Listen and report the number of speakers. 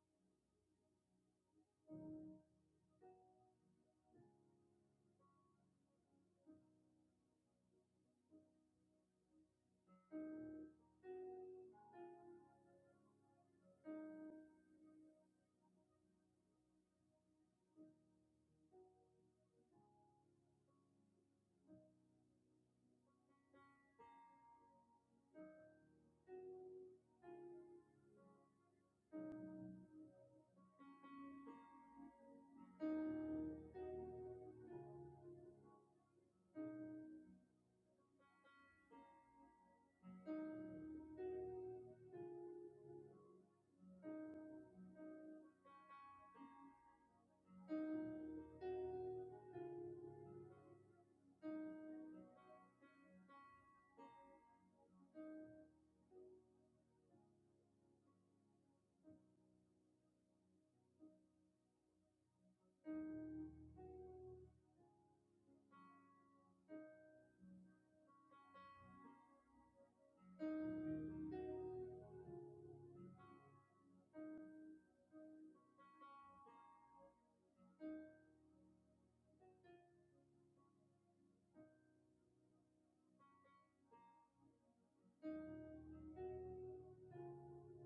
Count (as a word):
zero